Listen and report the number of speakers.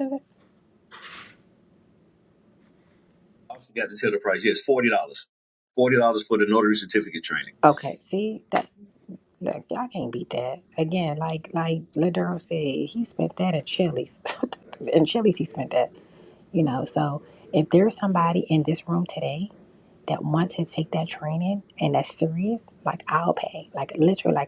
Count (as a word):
two